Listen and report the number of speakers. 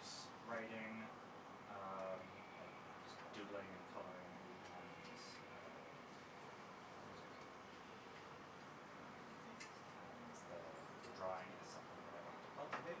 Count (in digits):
1